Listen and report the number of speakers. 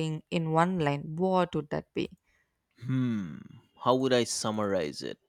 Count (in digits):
2